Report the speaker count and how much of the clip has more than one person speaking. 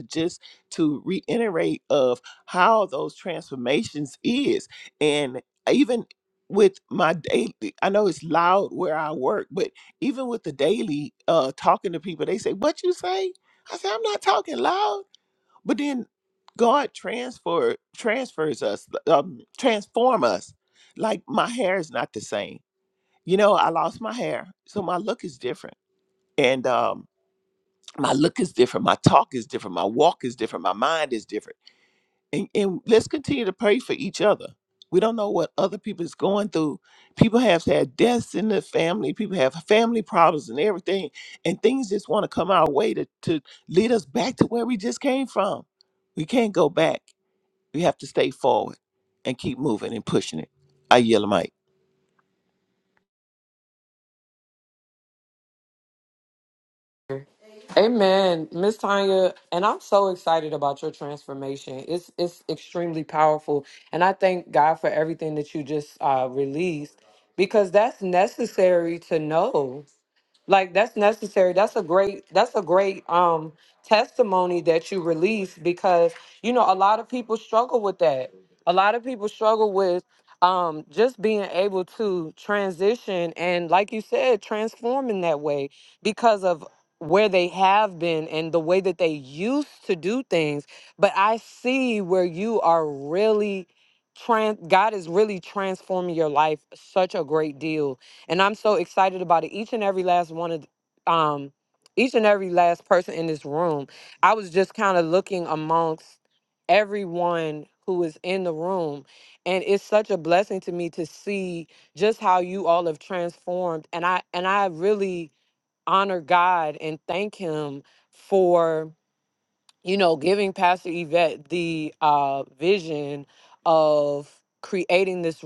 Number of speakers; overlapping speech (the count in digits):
2, no overlap